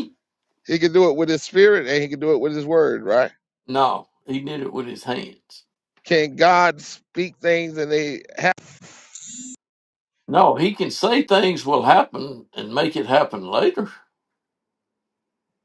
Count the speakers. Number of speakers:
two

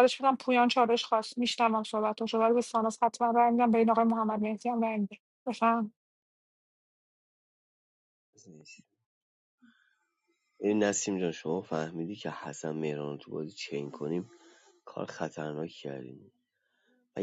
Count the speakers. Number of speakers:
two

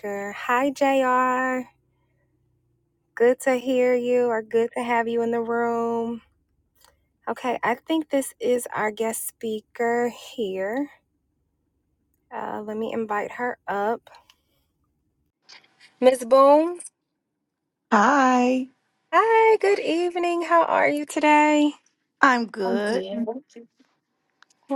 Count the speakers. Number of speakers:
two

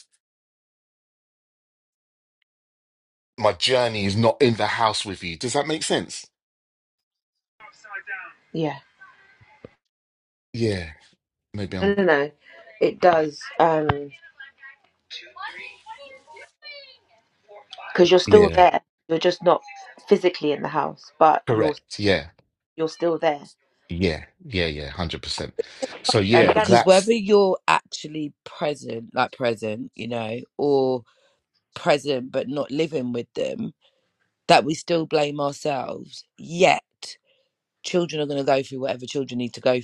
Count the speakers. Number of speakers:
three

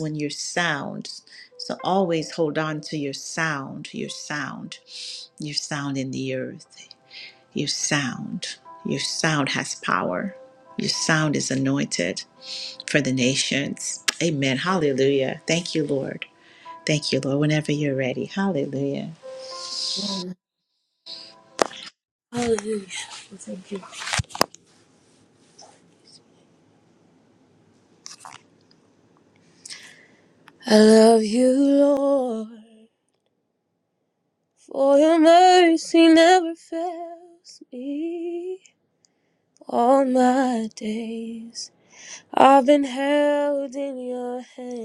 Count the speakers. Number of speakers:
two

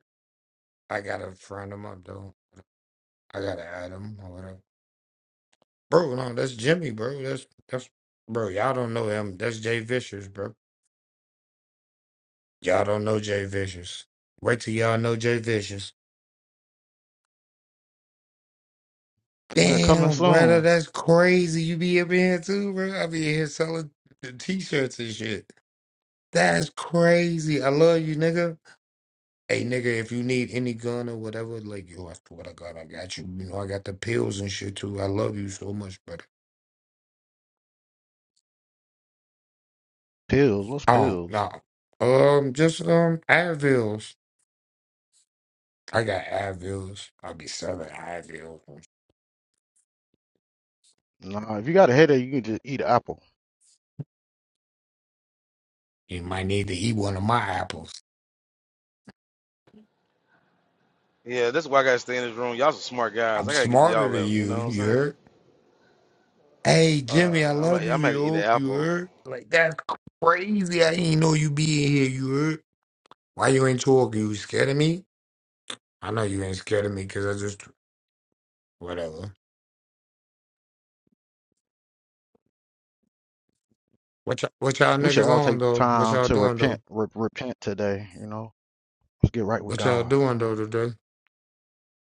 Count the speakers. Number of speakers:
three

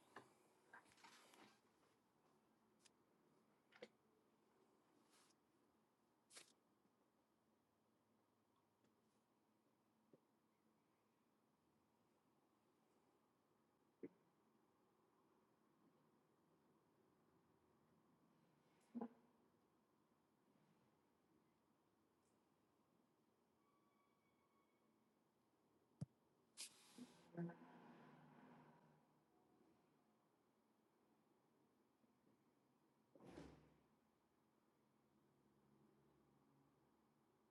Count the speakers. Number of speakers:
zero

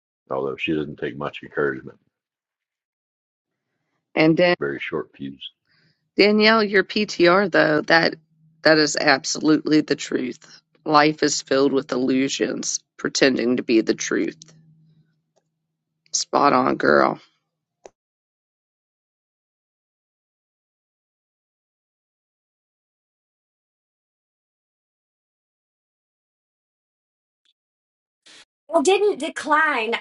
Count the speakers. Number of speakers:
three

